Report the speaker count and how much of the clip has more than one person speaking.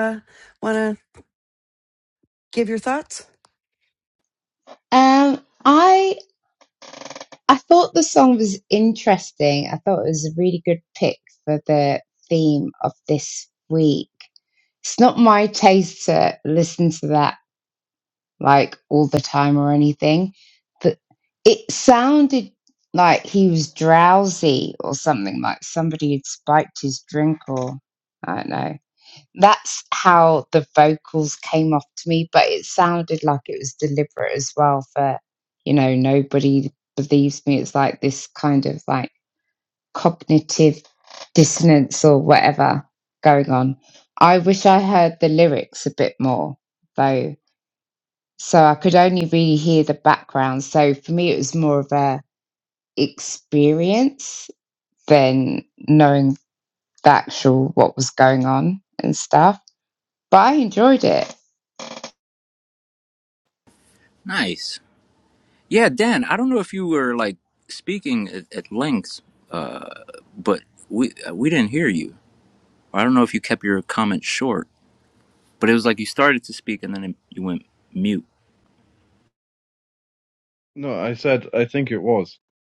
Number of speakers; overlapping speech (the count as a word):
four, no overlap